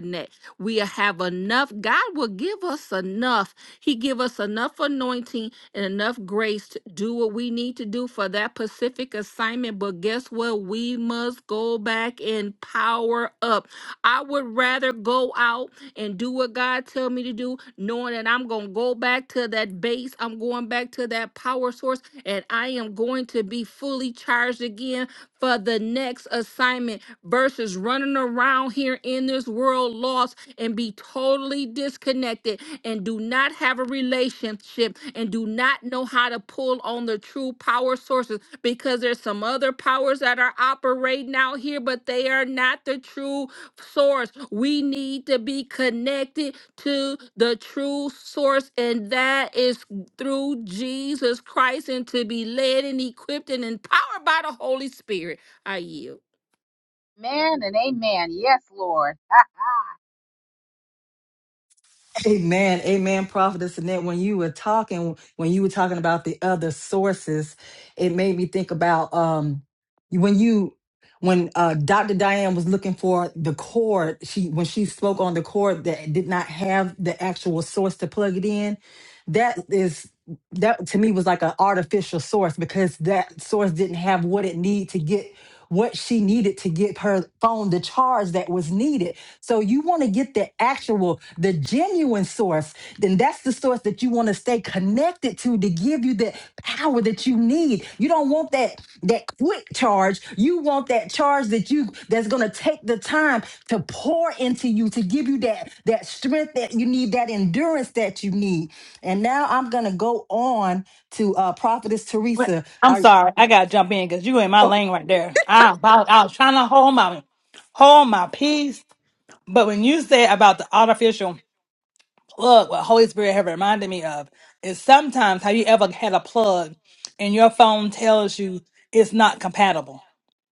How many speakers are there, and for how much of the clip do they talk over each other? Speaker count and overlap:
4, under 1%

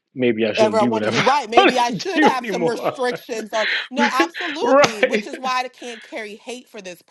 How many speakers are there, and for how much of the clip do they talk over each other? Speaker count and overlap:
2, about 44%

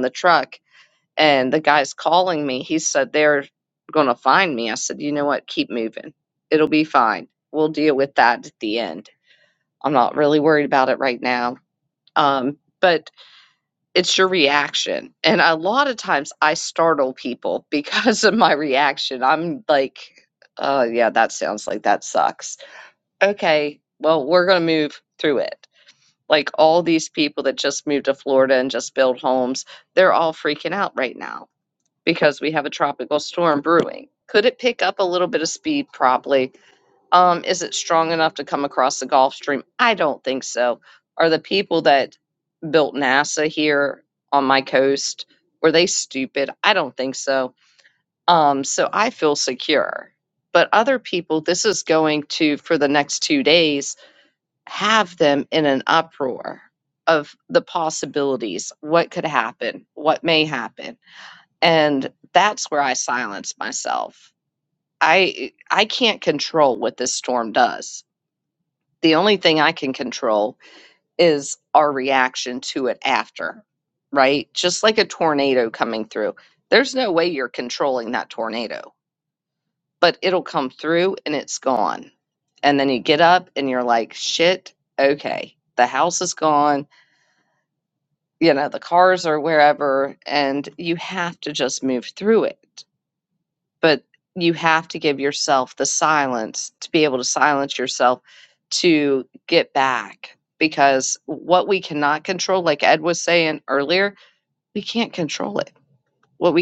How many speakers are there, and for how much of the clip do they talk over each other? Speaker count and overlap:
1, no overlap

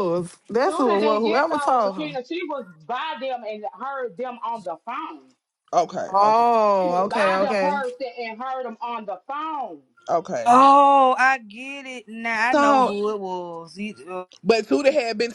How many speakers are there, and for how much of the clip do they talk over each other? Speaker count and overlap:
4, about 22%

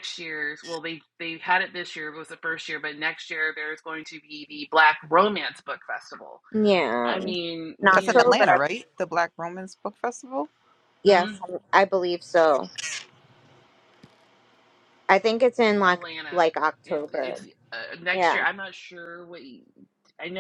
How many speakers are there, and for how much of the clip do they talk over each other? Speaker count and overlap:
3, about 12%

